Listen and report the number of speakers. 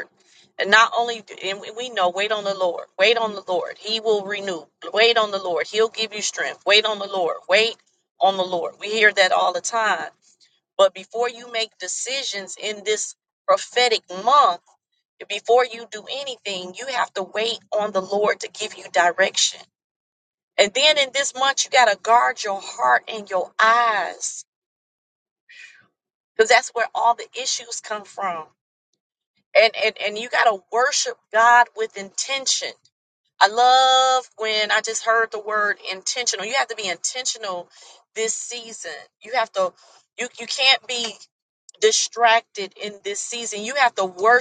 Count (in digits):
1